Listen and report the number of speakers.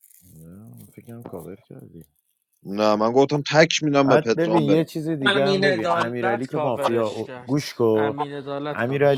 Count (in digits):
3